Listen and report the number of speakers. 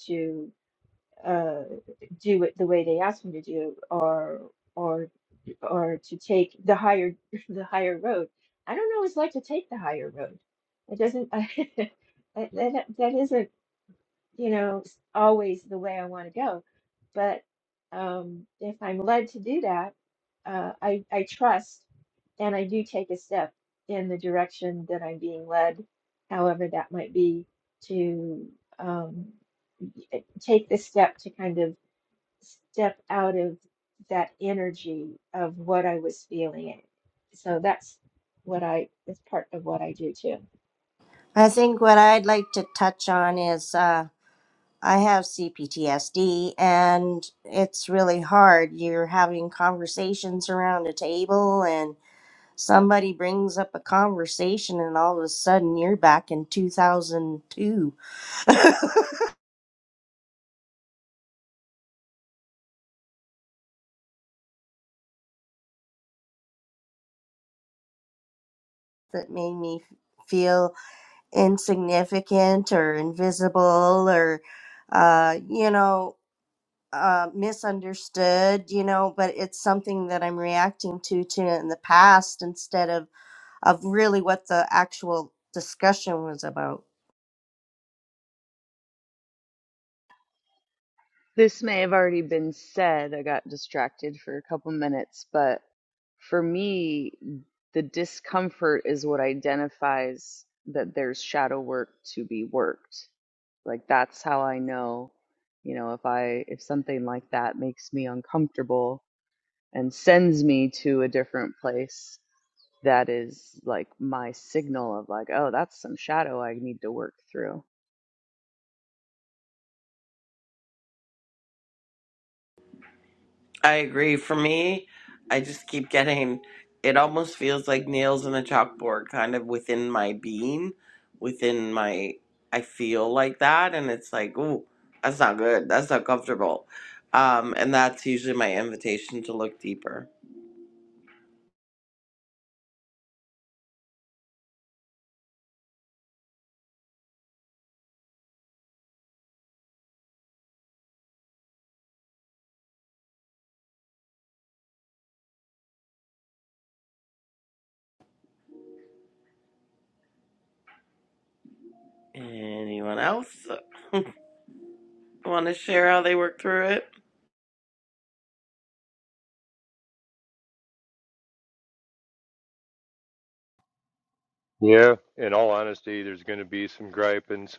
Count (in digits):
5